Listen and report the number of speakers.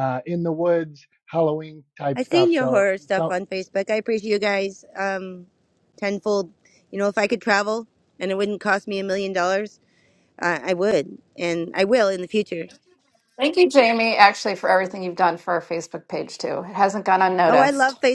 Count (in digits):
3